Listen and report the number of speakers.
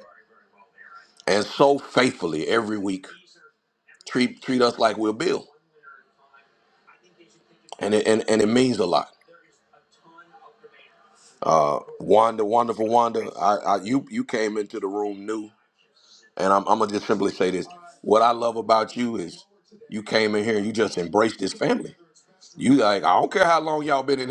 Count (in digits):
1